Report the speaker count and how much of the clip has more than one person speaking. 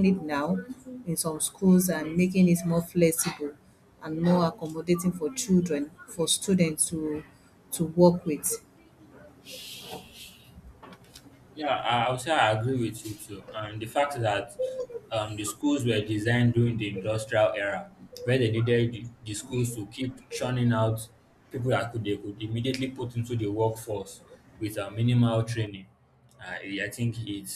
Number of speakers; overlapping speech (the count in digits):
2, no overlap